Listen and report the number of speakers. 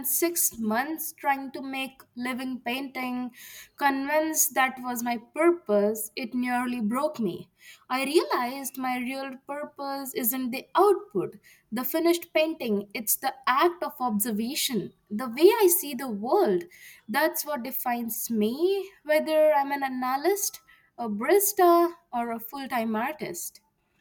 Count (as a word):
one